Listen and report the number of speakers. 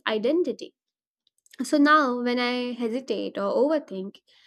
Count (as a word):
one